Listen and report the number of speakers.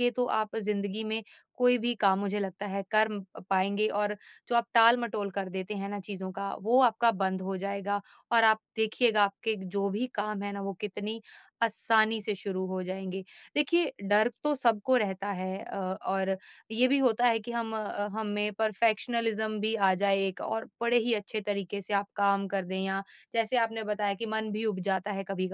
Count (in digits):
1